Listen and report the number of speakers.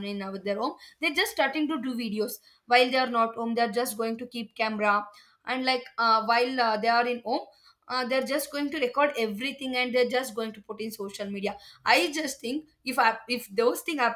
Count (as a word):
one